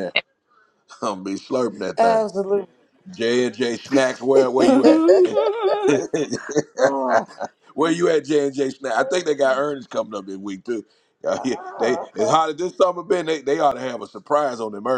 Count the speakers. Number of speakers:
3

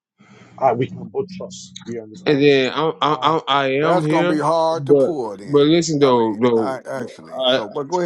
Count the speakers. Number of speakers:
3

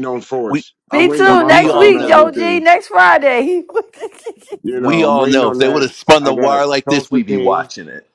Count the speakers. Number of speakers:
3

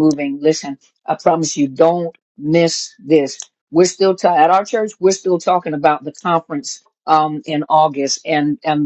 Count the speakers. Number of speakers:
1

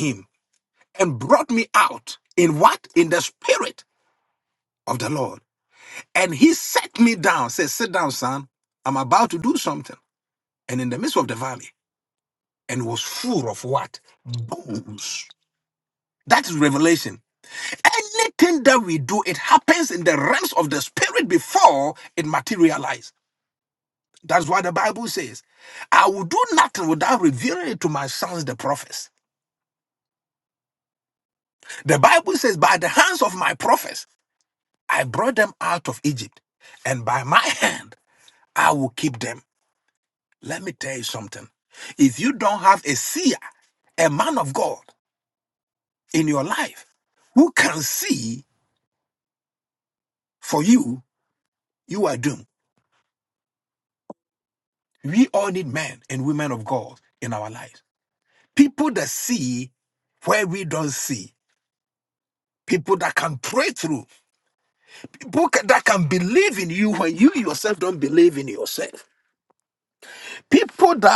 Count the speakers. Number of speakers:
1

